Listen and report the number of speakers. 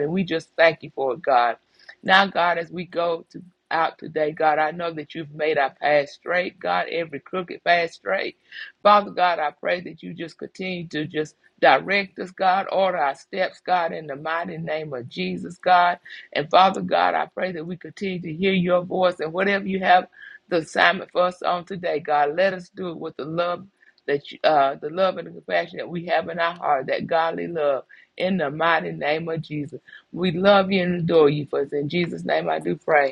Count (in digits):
1